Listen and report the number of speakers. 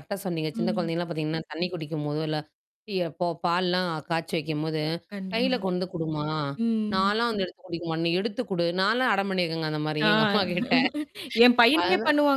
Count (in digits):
2